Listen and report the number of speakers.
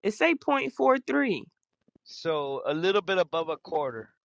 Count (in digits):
2